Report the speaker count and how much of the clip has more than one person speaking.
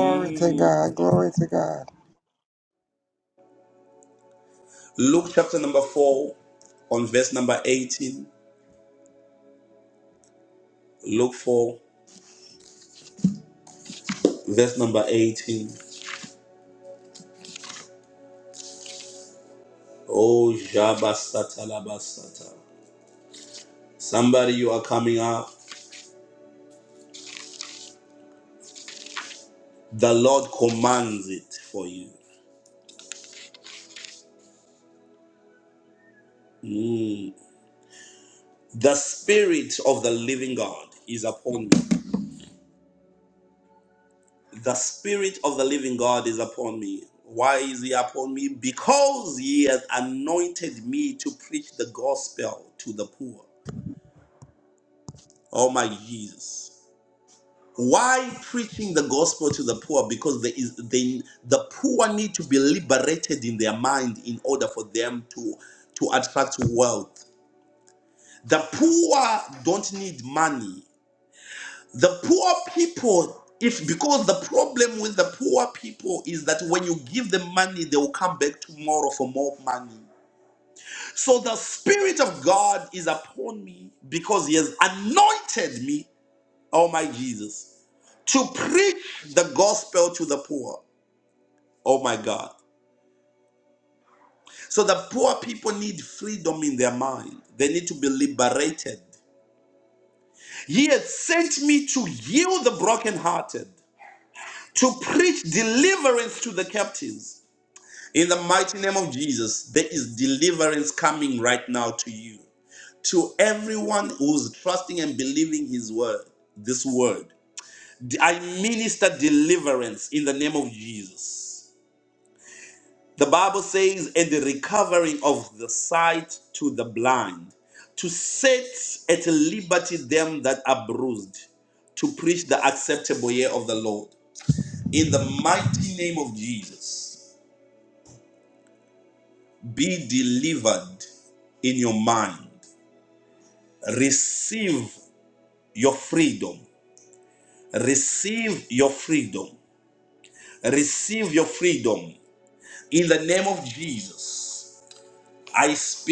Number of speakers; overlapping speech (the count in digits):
2, under 1%